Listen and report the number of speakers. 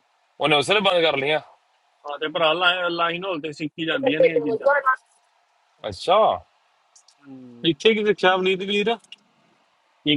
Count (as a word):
three